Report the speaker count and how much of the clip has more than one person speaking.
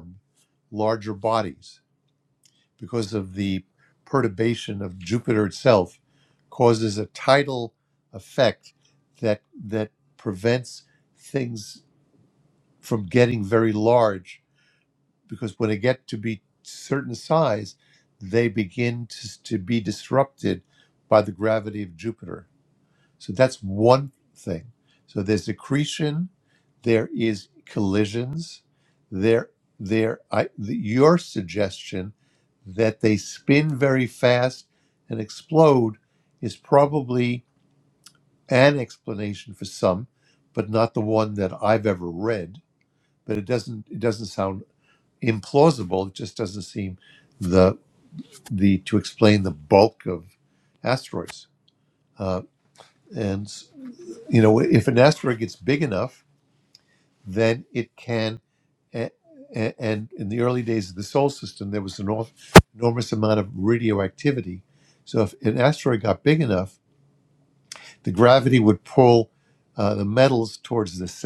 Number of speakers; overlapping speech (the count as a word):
one, no overlap